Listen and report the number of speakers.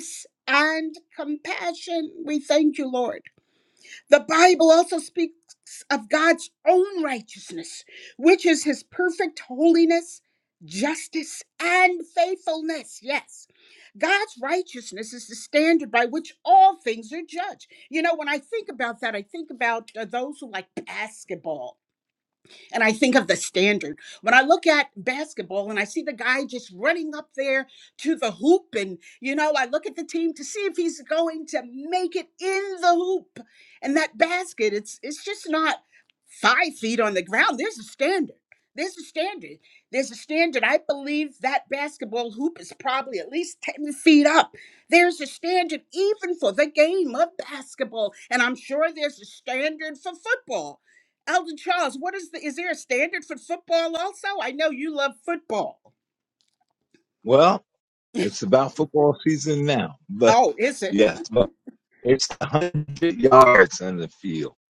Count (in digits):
2